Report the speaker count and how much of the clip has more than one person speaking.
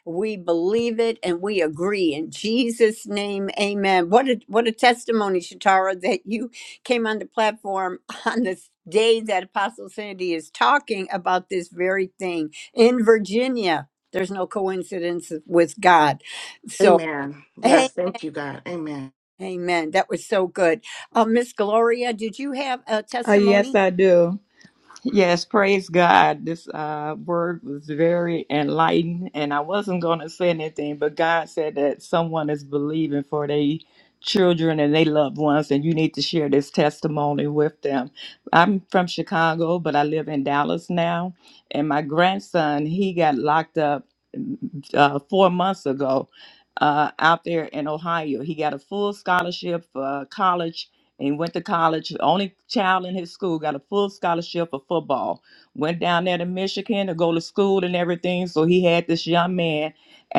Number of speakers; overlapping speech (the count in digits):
3, about 2%